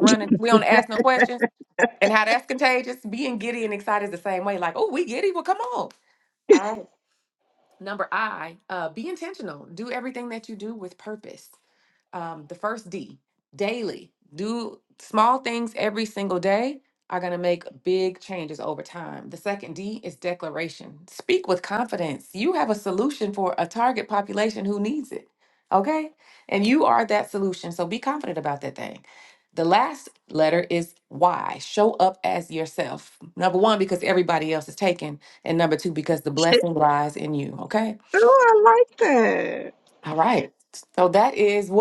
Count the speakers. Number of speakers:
2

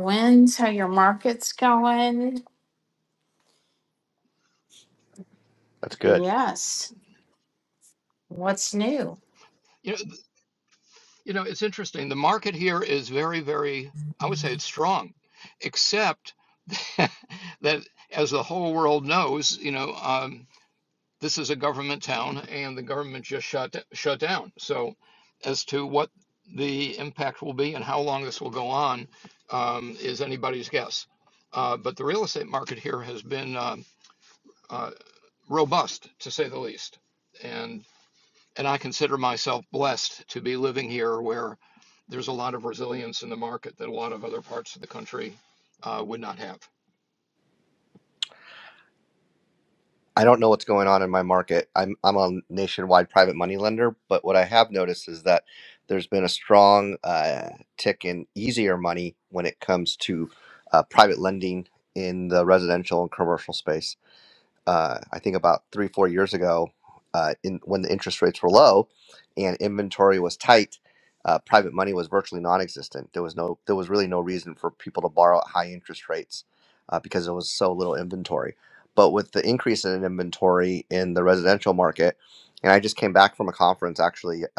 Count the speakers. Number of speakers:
3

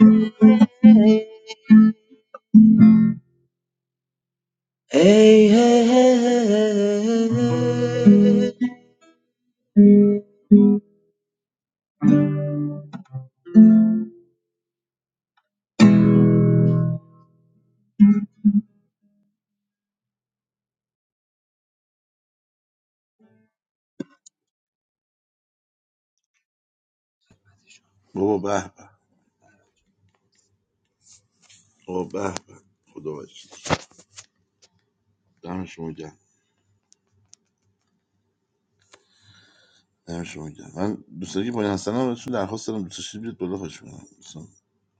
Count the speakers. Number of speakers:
2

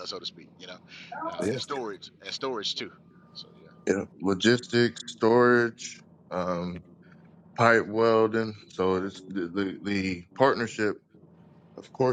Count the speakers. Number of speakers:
2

